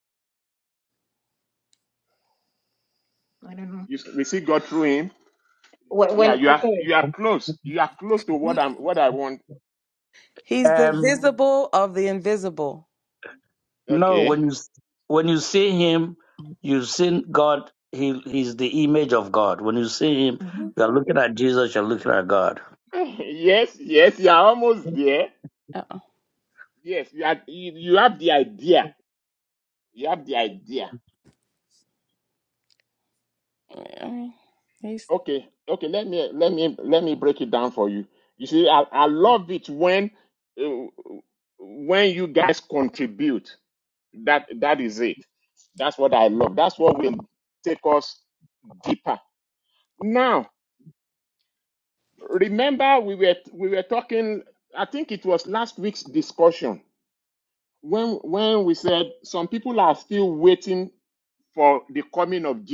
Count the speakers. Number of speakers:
4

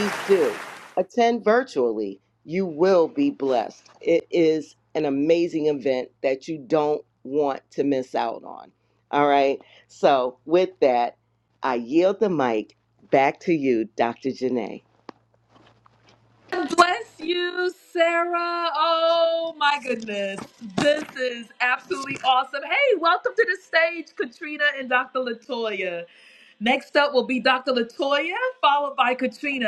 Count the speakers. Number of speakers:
2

